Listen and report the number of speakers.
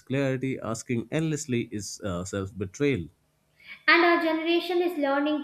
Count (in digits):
2